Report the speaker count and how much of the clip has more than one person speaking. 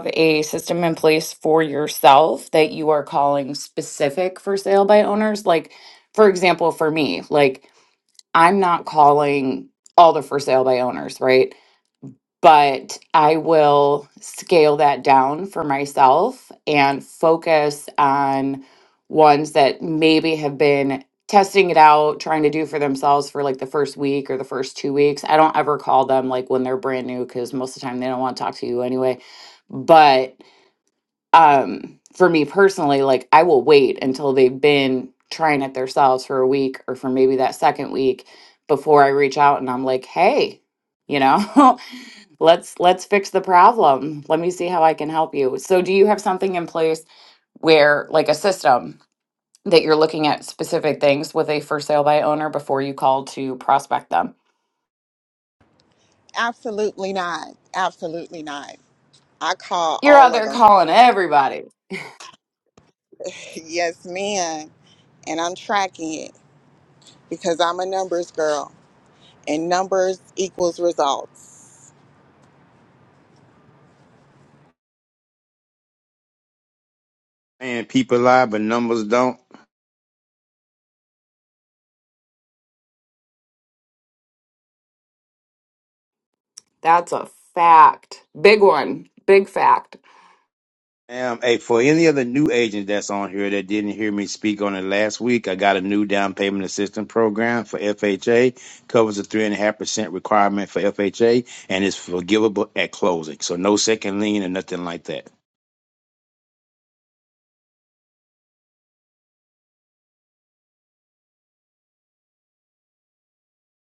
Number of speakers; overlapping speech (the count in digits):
3, about 1%